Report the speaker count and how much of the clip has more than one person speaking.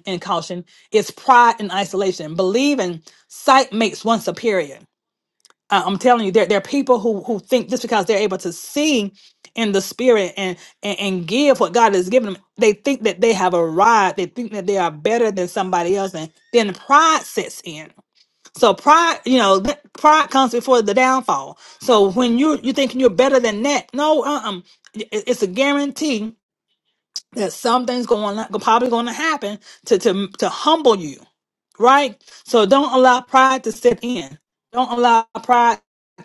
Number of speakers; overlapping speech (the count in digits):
1, no overlap